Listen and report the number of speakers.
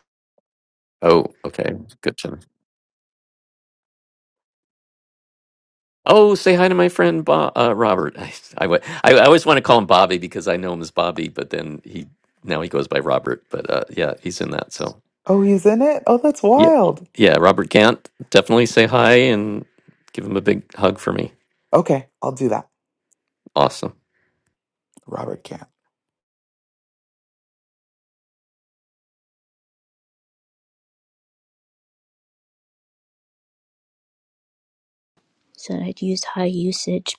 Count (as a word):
three